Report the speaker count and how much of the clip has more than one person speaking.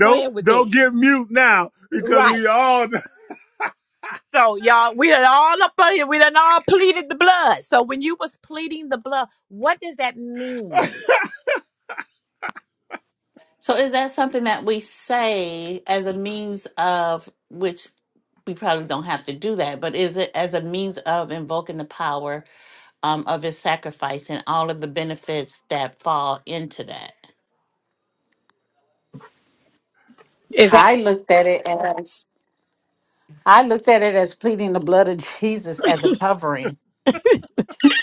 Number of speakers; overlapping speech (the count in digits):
4, about 3%